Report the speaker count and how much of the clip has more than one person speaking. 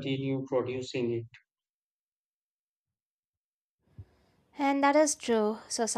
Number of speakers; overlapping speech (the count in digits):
2, no overlap